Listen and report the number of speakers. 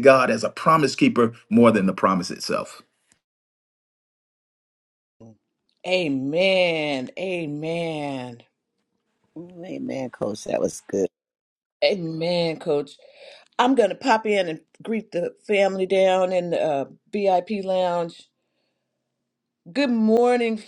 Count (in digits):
3